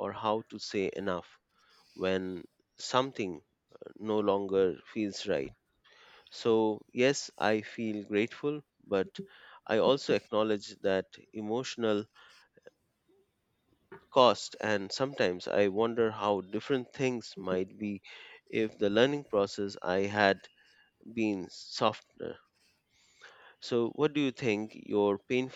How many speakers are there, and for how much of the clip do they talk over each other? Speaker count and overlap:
1, no overlap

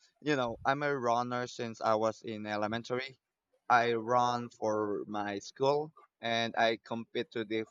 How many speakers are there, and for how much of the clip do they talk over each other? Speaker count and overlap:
1, no overlap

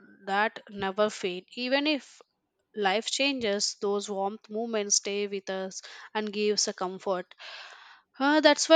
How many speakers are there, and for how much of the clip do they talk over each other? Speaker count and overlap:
1, no overlap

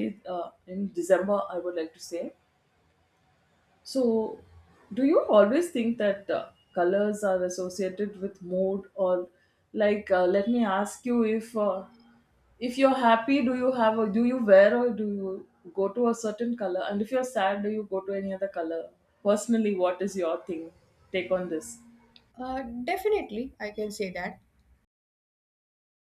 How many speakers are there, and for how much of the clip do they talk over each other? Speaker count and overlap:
2, no overlap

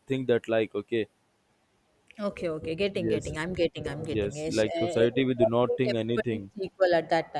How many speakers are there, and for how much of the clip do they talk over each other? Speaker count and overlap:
2, about 30%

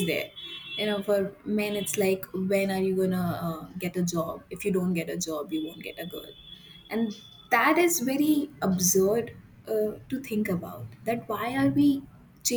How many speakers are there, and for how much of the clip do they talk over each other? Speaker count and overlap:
1, no overlap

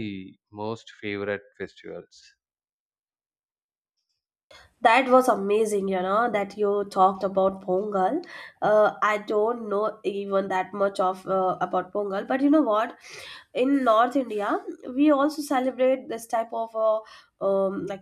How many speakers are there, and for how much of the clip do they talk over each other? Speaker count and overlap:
2, no overlap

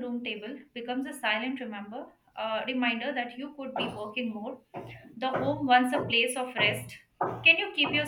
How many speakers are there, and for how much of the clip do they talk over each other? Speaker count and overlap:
1, no overlap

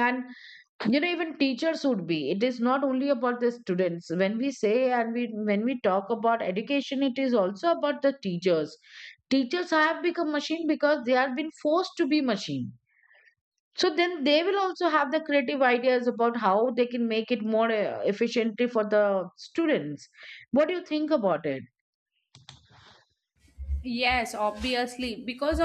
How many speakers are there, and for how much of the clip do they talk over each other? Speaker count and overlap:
2, no overlap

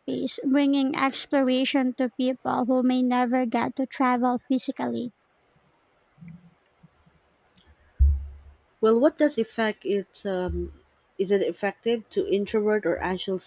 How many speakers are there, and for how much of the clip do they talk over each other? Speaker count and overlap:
2, no overlap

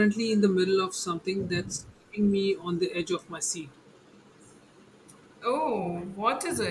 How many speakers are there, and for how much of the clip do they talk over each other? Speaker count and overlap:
2, no overlap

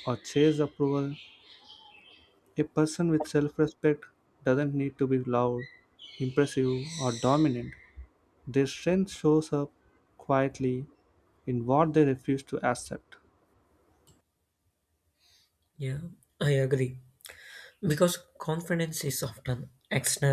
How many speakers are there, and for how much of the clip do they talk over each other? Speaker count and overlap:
2, no overlap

